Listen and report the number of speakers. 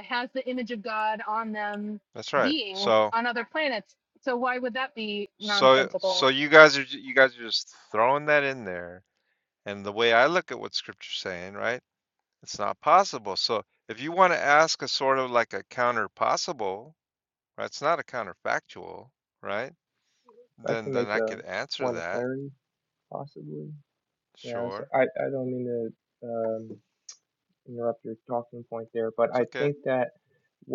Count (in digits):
3